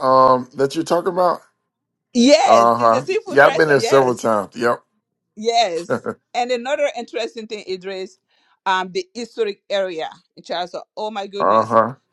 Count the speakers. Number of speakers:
2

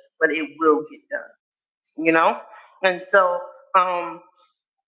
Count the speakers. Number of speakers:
1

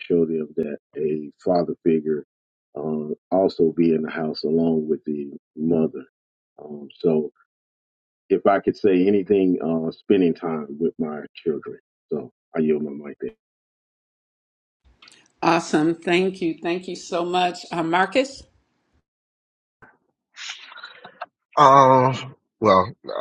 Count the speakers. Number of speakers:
3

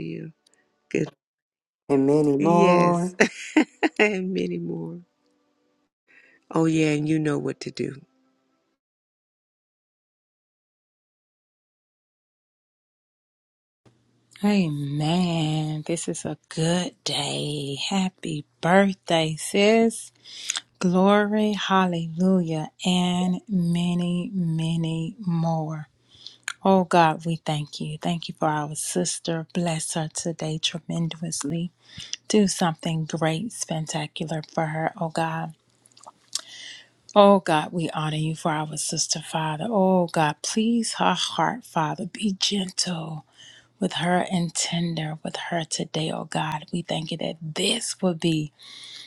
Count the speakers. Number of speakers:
3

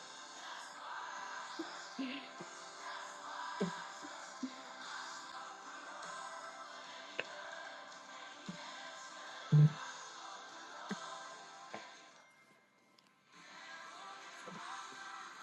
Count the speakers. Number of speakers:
0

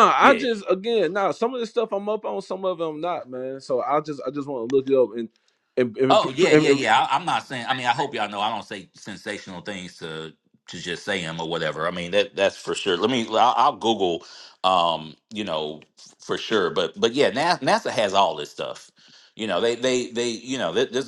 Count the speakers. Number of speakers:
2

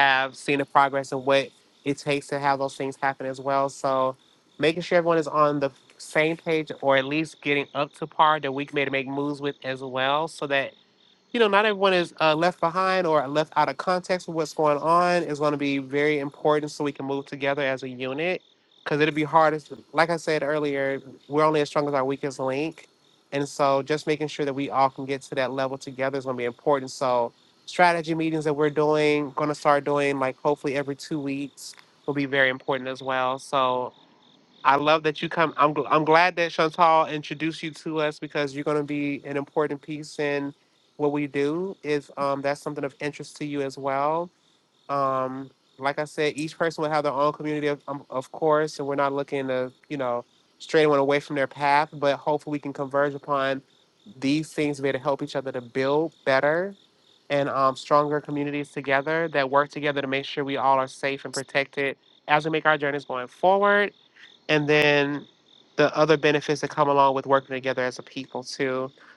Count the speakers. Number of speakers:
1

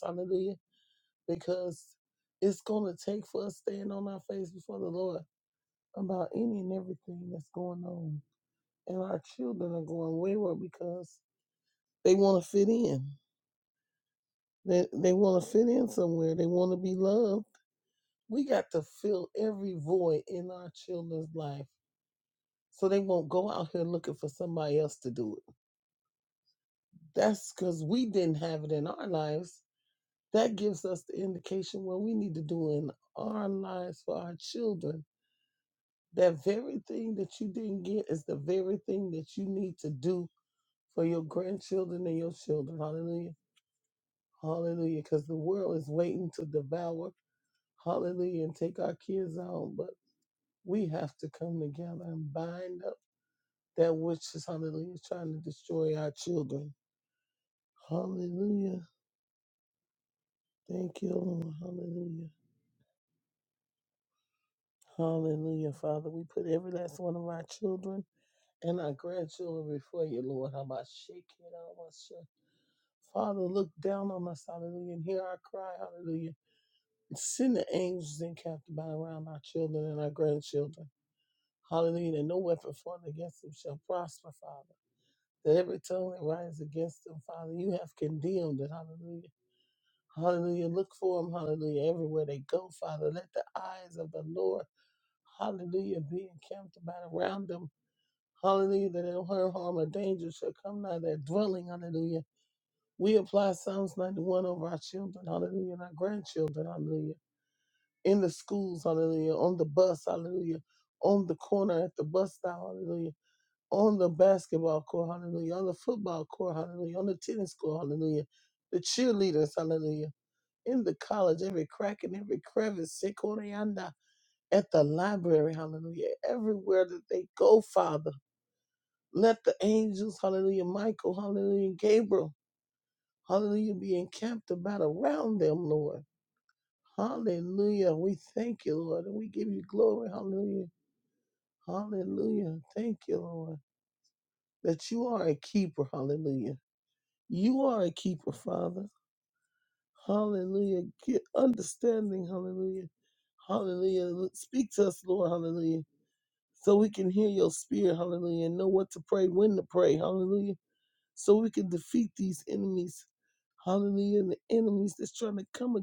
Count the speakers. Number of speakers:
1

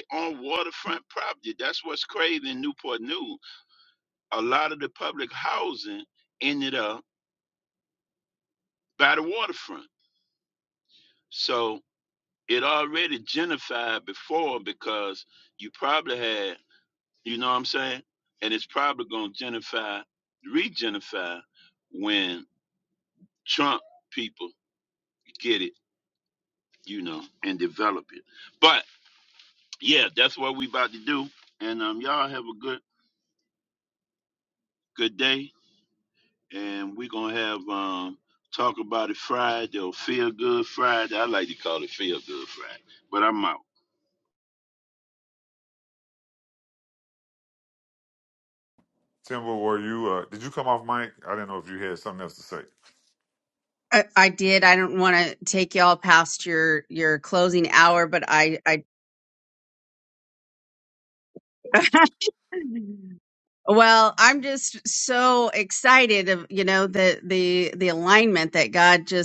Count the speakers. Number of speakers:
3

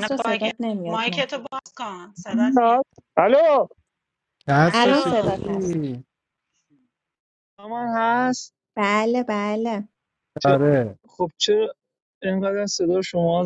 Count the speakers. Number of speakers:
4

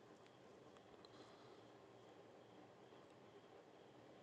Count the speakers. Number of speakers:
0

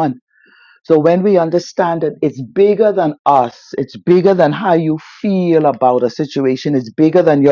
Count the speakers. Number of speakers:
1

